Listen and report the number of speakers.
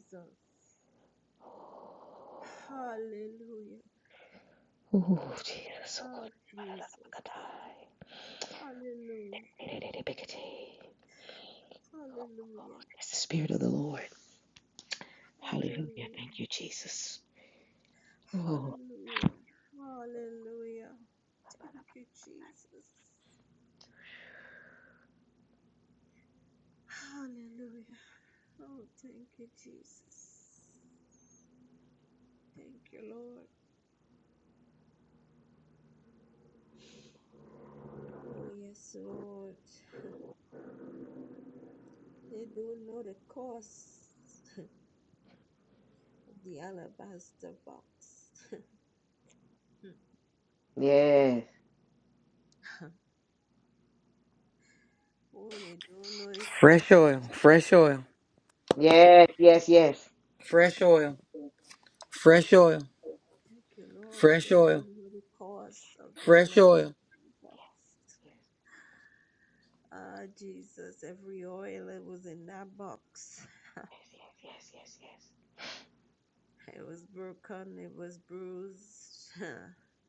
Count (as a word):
three